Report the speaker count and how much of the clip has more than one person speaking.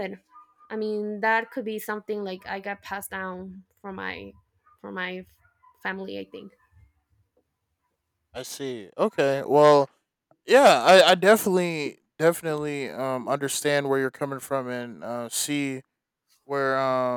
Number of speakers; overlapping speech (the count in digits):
2, no overlap